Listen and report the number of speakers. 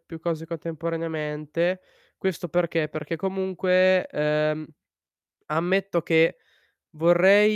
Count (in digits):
1